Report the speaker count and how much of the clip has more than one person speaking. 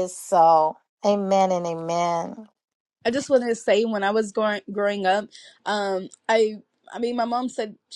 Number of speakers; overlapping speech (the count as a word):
two, no overlap